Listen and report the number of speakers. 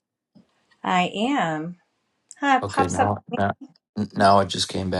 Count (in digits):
2